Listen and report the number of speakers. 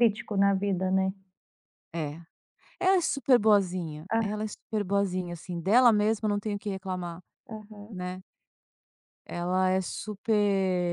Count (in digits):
2